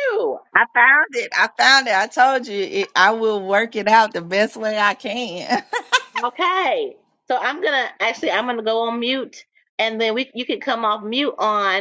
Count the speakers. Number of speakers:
two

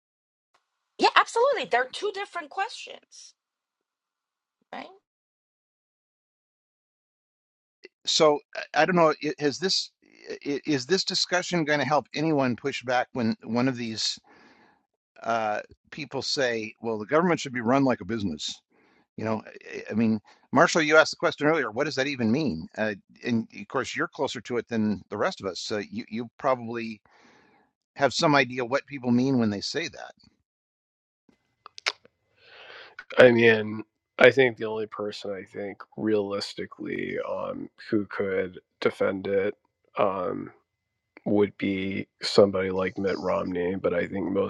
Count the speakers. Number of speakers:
three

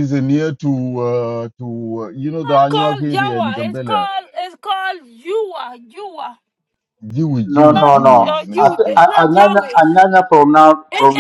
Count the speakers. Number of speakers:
three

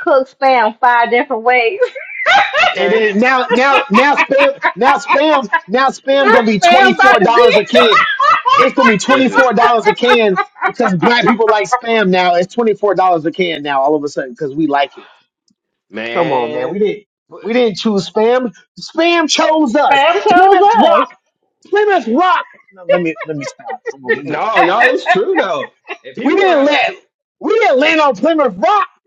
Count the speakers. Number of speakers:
three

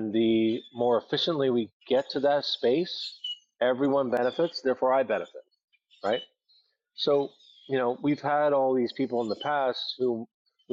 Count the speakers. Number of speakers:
one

